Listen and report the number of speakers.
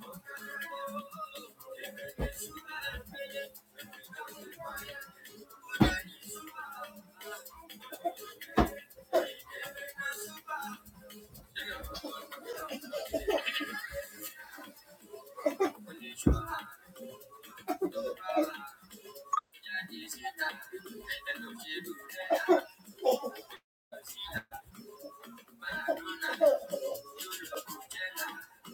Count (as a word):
zero